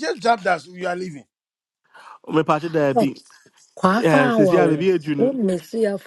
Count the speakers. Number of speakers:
3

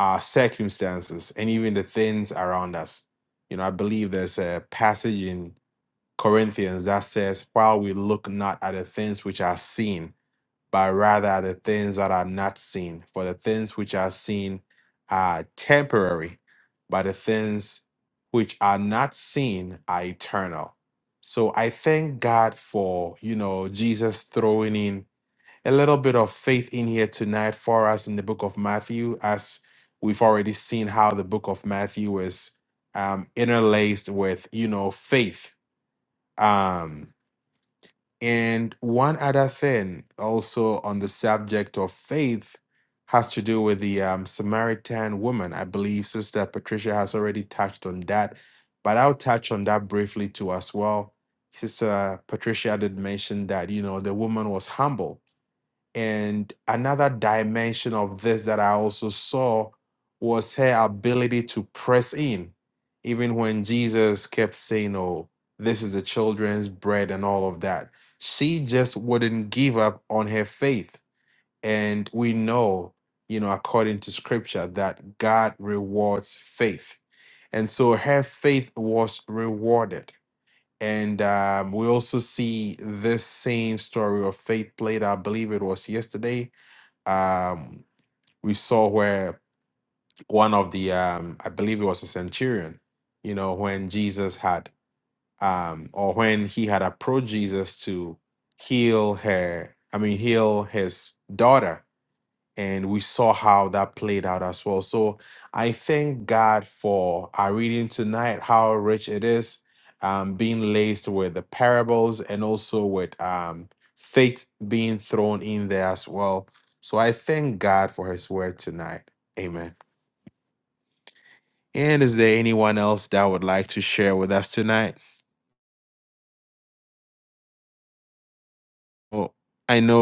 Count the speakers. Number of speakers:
1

